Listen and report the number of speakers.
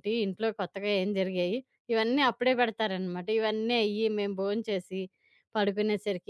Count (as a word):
one